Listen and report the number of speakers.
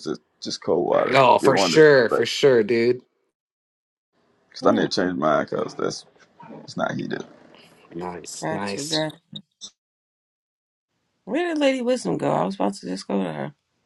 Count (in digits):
3